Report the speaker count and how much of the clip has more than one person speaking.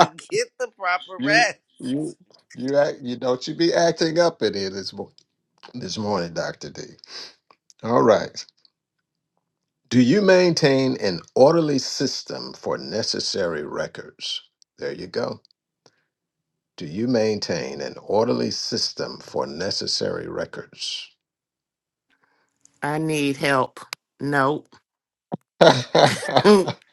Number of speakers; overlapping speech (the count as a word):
three, about 1%